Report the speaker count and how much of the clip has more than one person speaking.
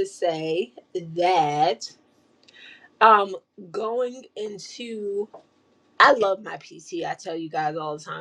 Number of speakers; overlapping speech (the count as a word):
one, no overlap